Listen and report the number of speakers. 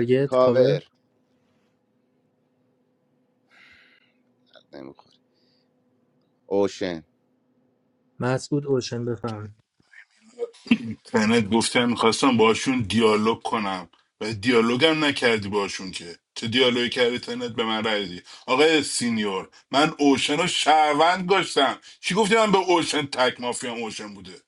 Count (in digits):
3